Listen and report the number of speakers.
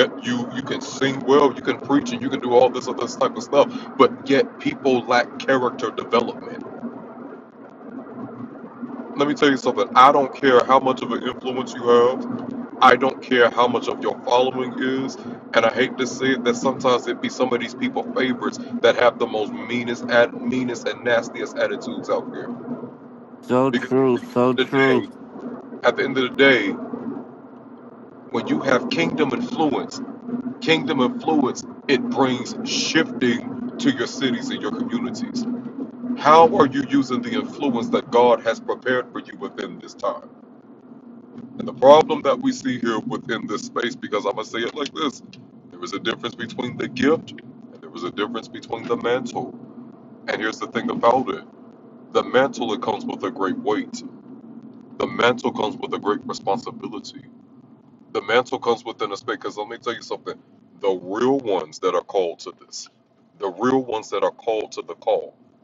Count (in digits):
2